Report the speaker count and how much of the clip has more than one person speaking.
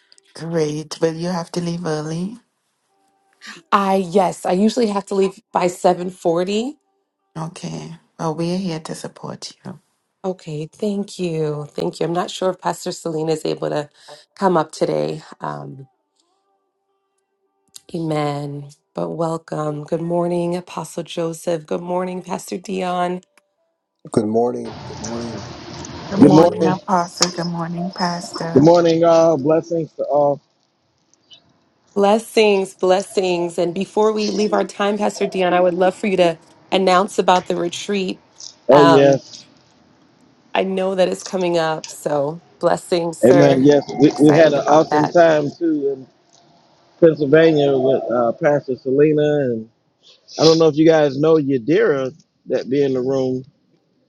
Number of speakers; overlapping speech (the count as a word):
four, about 5%